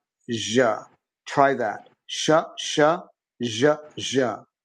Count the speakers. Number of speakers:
1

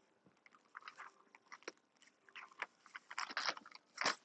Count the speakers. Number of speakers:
0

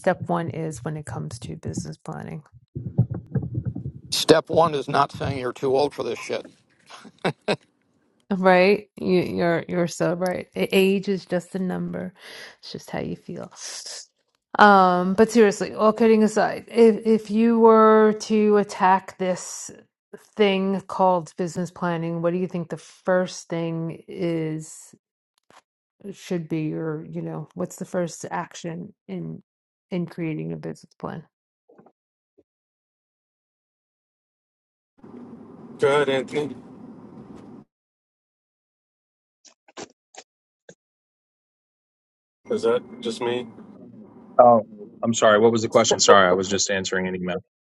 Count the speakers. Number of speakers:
4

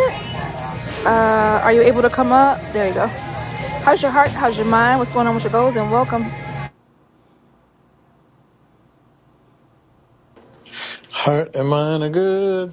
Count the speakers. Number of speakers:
2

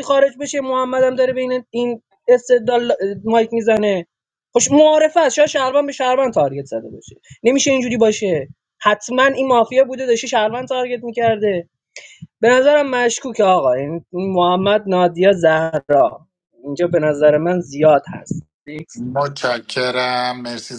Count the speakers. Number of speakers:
2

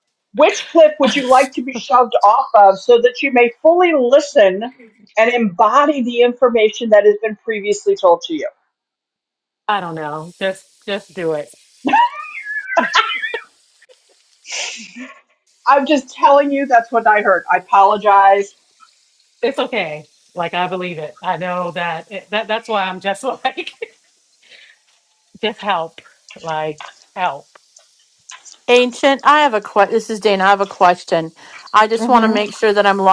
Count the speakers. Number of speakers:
3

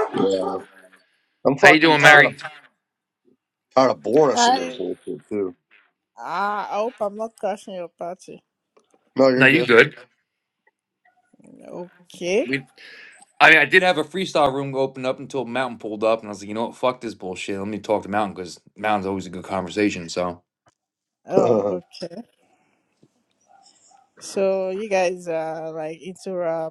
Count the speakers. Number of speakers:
3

